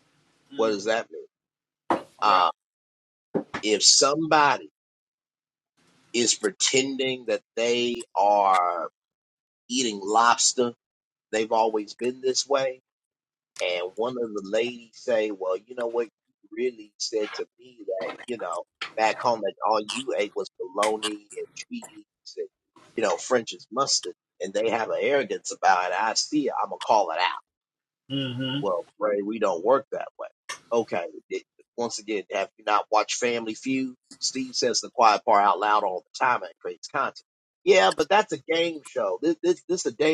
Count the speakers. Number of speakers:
two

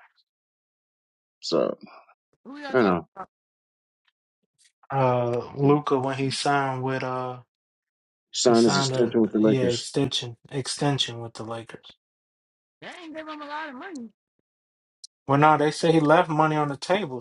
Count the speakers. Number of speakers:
three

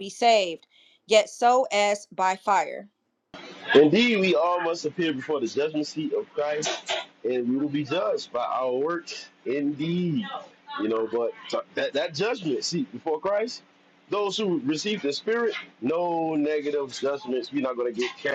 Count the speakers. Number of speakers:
two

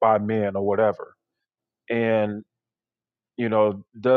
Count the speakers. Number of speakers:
one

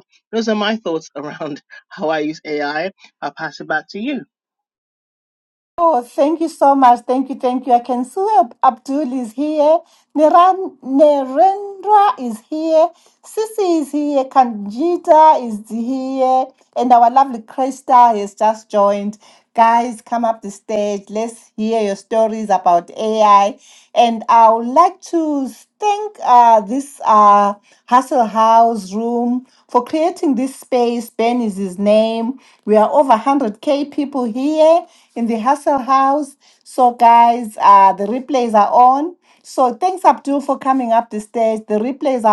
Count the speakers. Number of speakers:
two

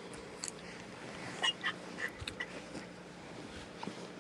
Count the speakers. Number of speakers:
zero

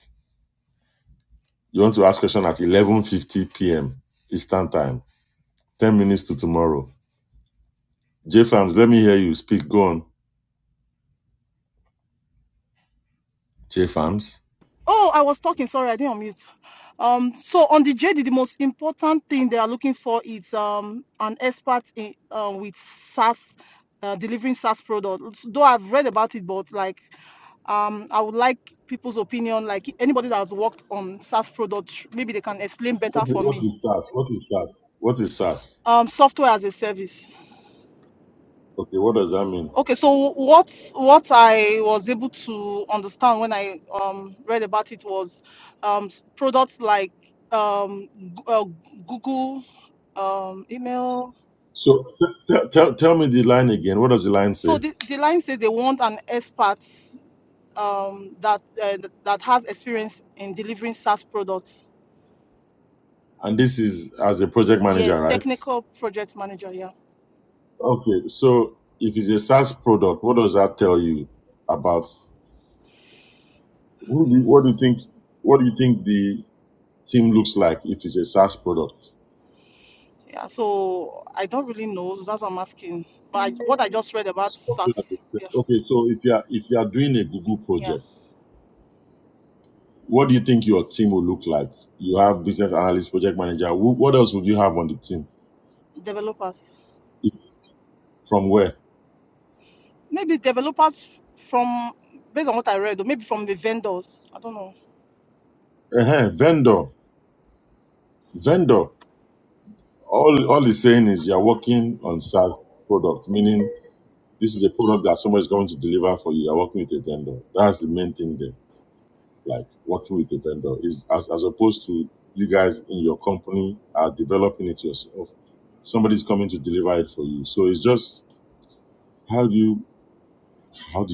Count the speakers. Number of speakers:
two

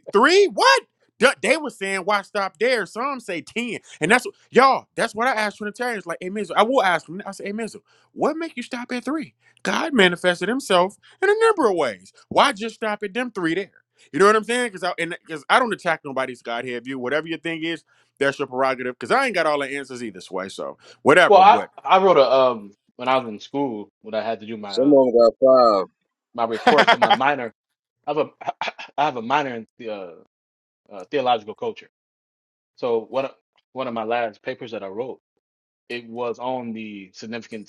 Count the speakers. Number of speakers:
three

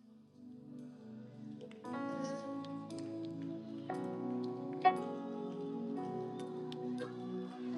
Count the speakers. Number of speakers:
zero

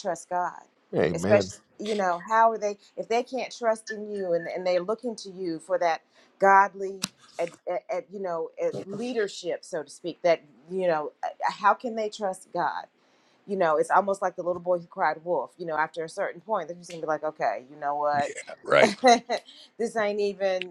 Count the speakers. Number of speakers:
two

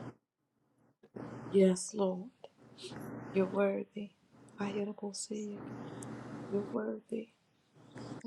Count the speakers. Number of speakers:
one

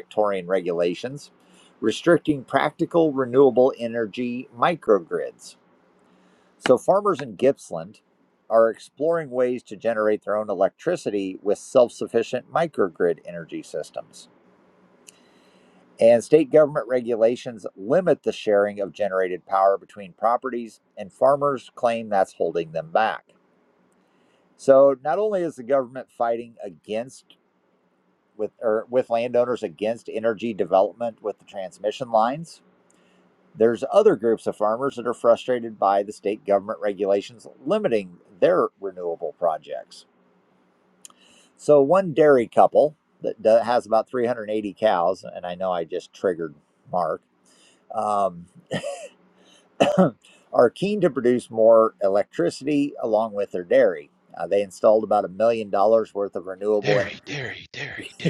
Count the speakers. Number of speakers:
two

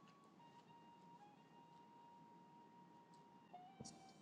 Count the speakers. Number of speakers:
zero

